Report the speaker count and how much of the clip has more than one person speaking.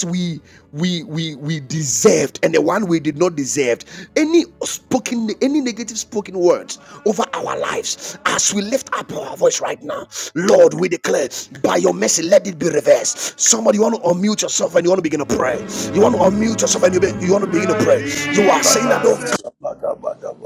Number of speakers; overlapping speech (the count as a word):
two, about 4%